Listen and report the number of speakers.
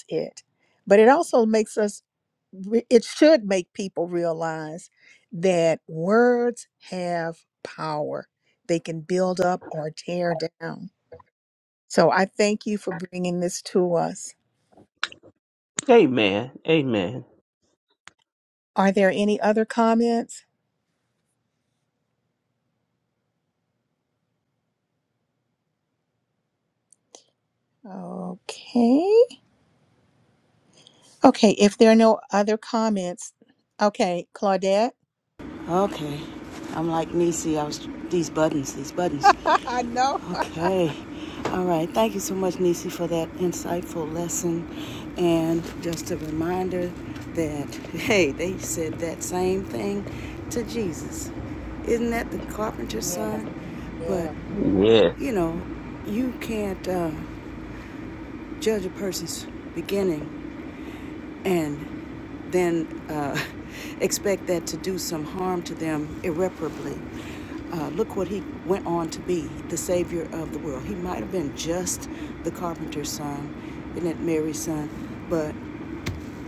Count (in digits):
3